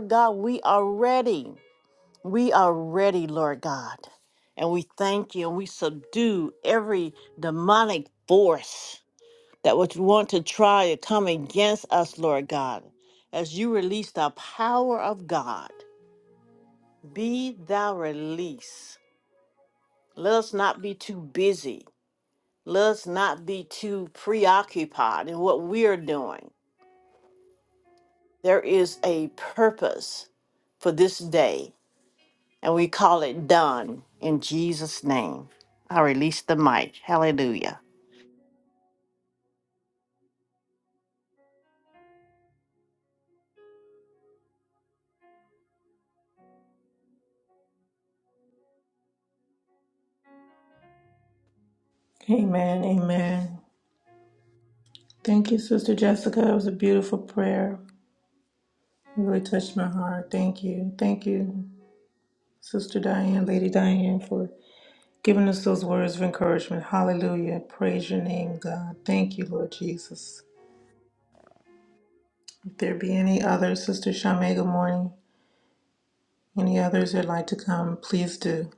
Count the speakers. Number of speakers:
2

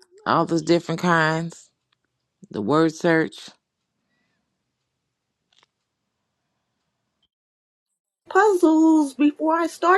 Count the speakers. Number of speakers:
2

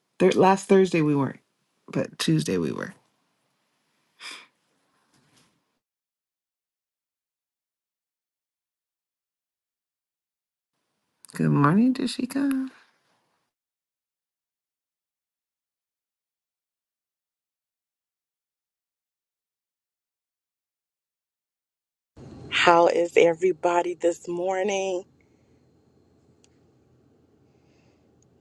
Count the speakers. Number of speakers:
2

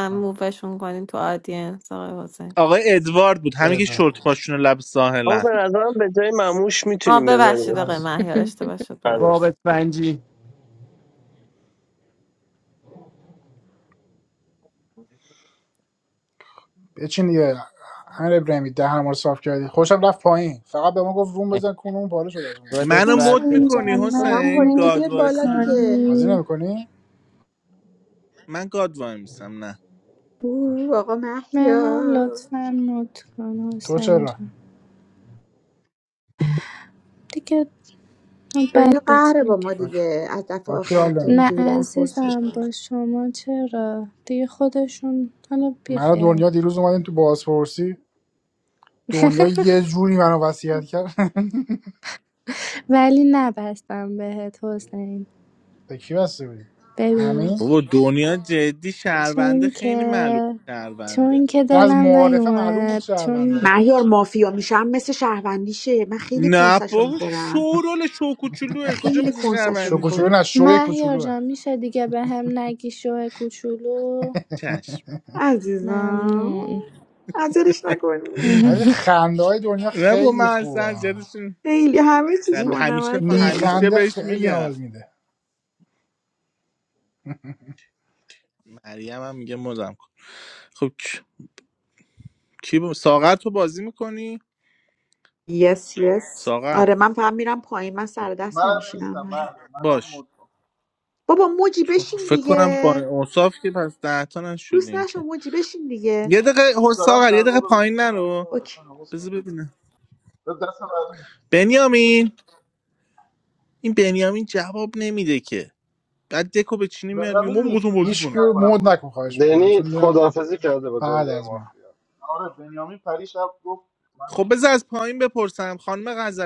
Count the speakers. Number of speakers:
9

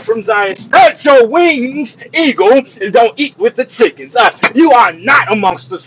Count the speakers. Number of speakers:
1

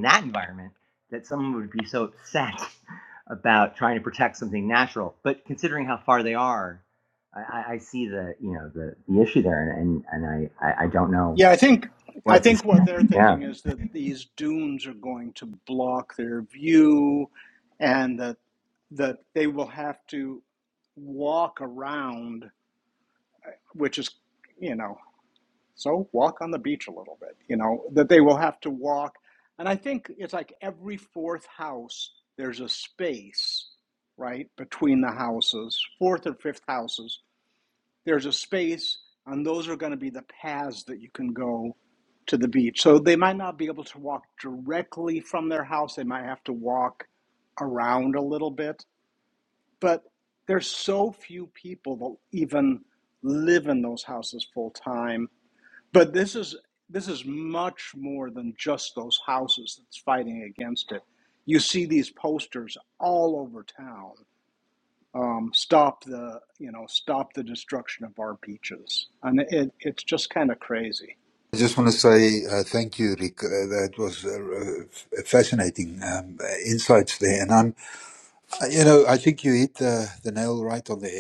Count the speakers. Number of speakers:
3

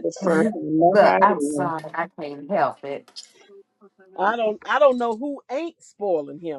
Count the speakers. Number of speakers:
3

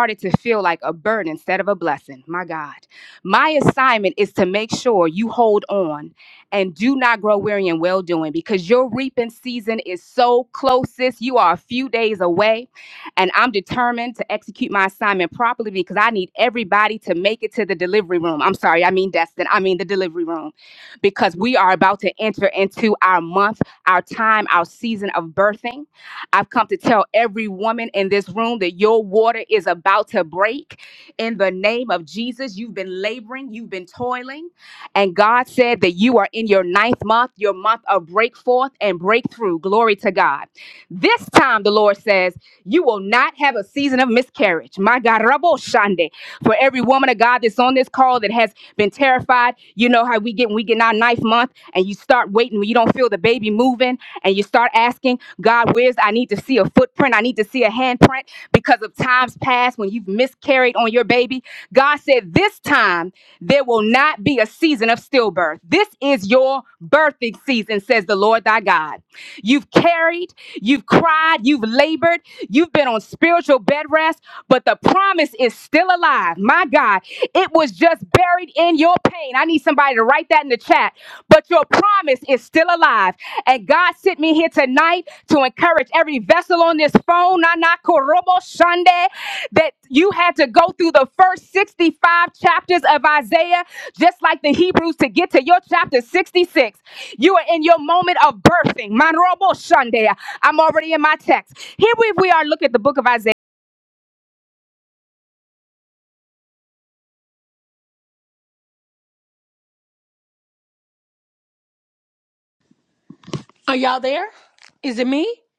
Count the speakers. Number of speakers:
2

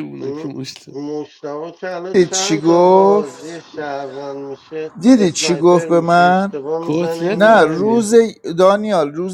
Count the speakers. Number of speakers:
3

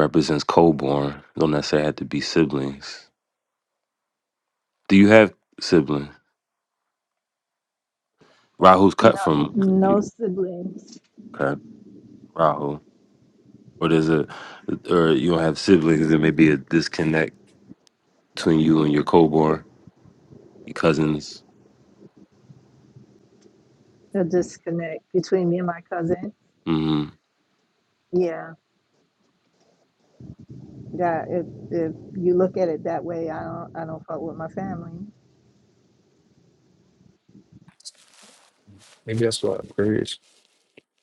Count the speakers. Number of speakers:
3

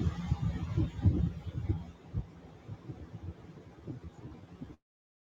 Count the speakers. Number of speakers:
0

